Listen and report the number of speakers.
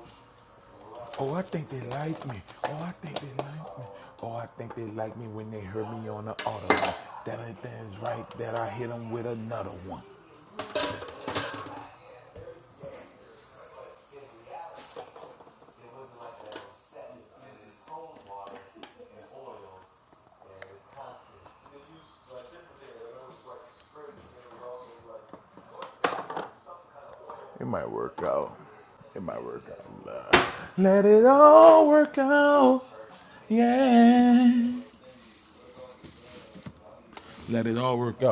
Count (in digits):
1